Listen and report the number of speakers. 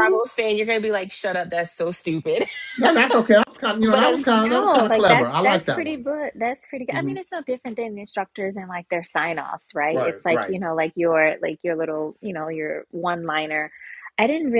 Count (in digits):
3